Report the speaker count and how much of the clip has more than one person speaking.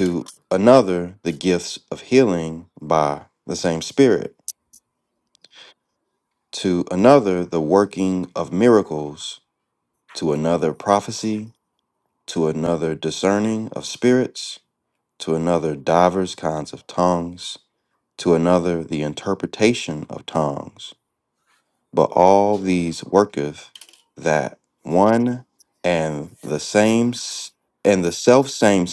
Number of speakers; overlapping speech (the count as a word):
one, no overlap